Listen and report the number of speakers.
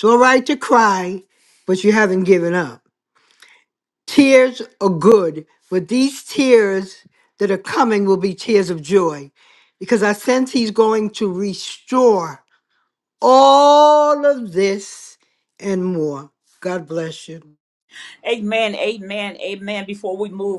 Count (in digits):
2